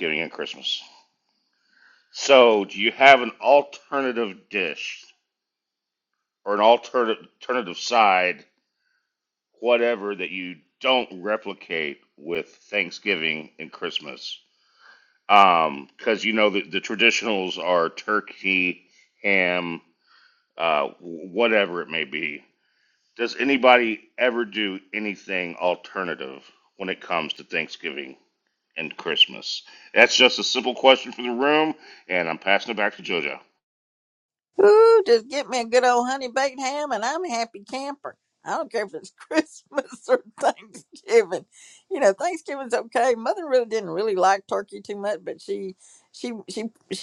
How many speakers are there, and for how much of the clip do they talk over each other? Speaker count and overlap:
2, no overlap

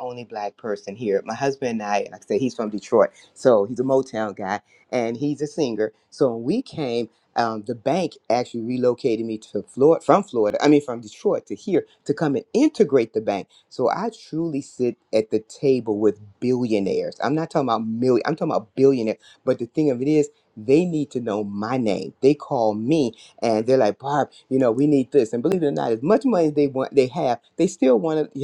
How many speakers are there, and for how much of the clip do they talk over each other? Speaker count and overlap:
1, no overlap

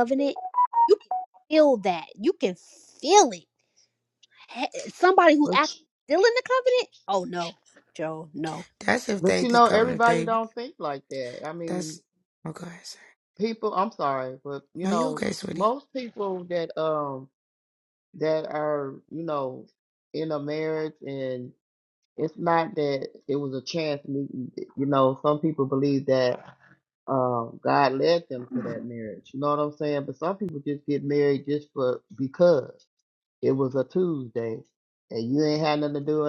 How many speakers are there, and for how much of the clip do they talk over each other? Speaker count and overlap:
3, about 6%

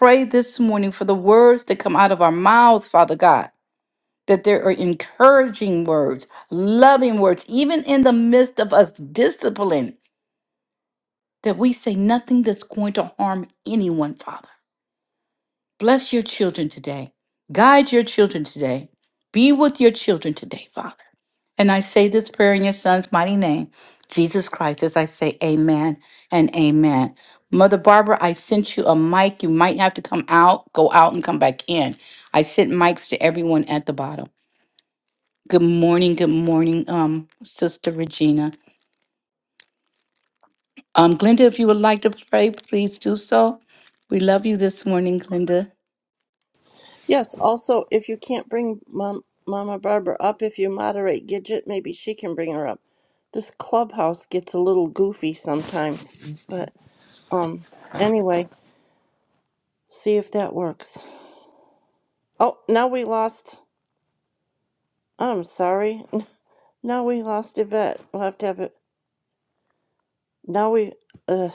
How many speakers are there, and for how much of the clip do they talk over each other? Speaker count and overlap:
2, no overlap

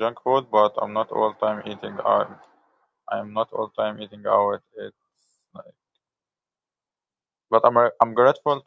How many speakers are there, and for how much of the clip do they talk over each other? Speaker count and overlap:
1, no overlap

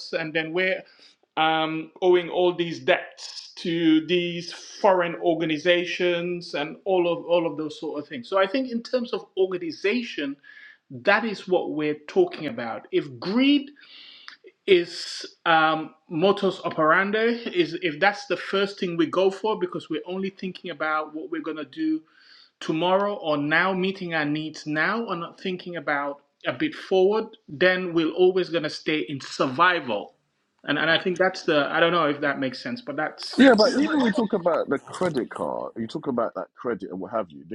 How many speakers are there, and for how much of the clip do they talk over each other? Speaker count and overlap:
2, under 1%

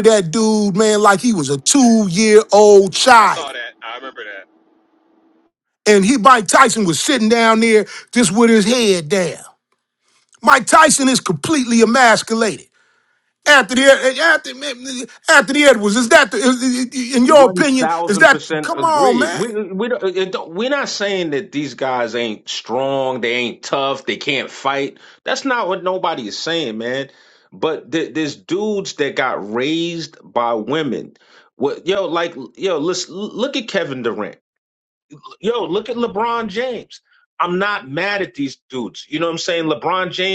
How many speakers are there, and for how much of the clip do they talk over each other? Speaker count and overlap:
3, about 6%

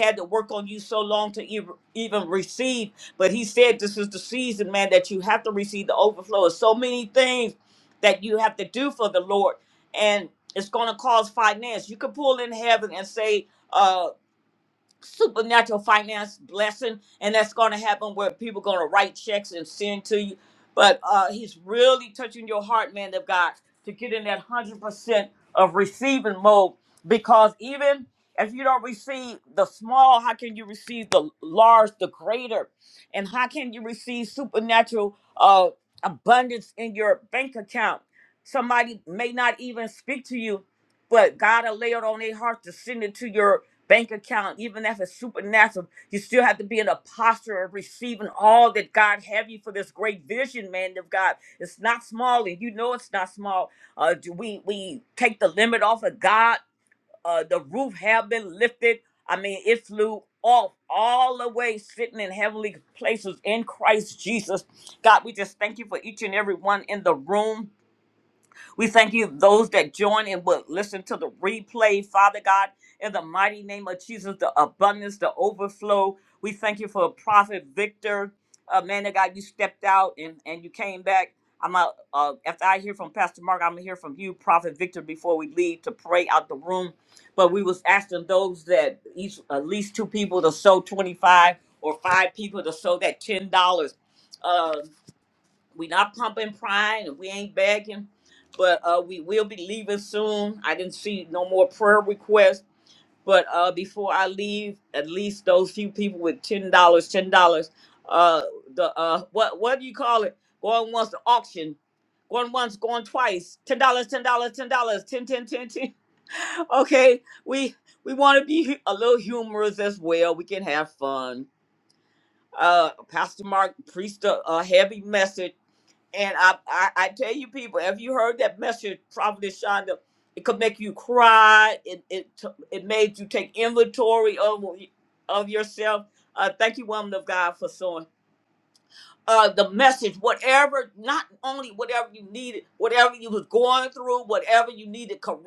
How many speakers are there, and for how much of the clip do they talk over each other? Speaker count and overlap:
1, no overlap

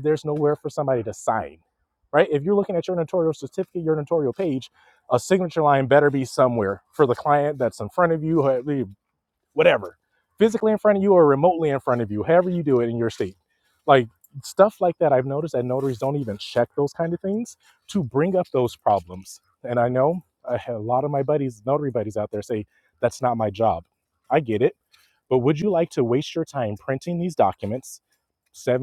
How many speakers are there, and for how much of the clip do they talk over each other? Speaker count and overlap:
1, no overlap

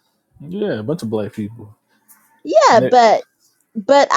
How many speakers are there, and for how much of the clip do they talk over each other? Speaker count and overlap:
2, about 7%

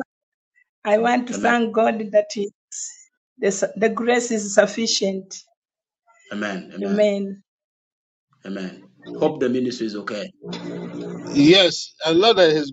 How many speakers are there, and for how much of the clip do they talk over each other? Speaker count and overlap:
3, about 4%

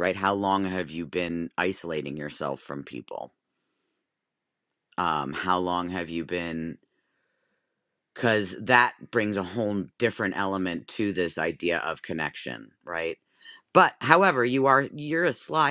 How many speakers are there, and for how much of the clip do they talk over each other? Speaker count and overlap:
1, no overlap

